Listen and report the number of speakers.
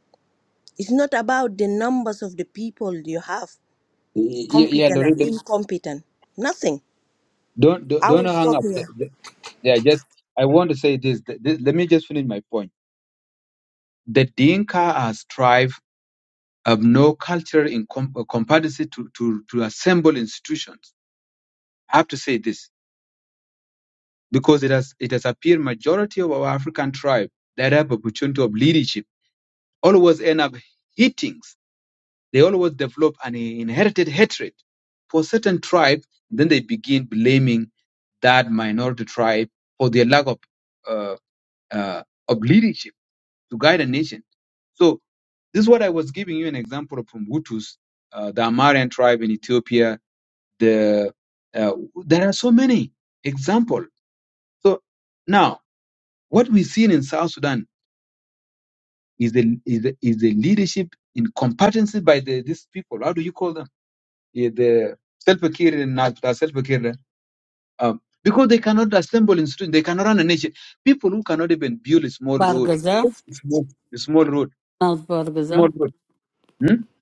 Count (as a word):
three